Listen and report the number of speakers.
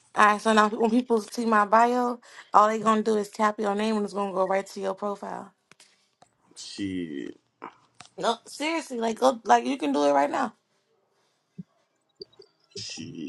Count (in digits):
2